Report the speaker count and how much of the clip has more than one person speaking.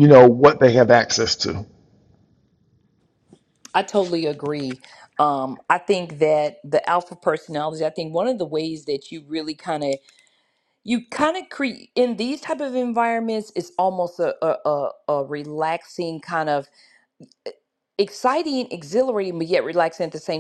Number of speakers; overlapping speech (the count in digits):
2, no overlap